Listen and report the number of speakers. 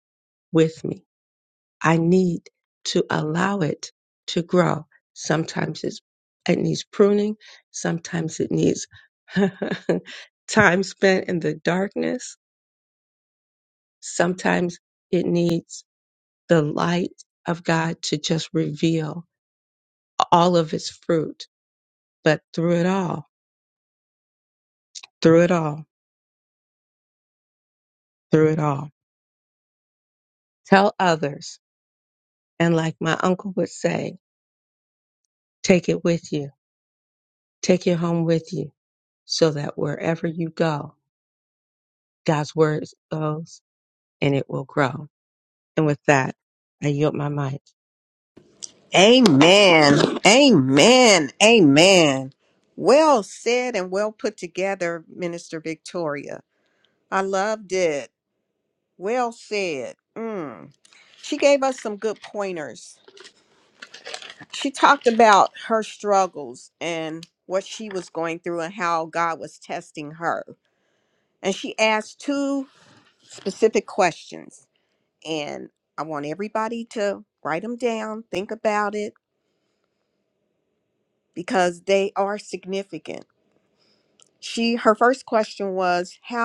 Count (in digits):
2